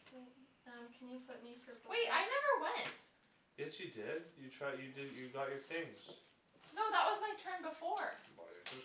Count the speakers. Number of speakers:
three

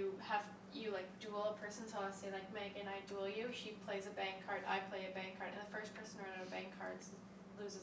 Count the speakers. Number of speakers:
one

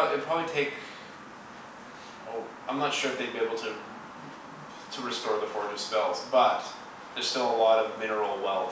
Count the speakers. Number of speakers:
one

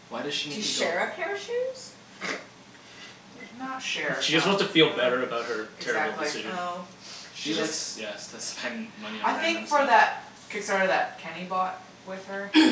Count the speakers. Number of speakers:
four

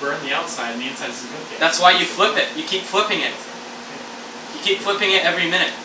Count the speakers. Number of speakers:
two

